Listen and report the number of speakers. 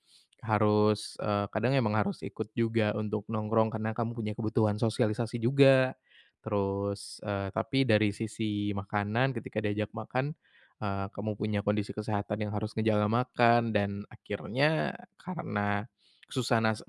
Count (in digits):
1